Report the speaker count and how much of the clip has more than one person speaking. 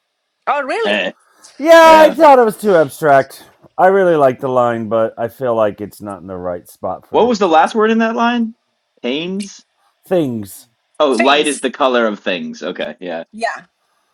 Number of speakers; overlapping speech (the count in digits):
3, about 8%